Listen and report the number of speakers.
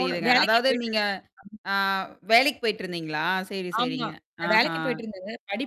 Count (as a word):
two